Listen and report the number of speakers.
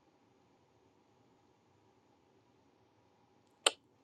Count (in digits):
0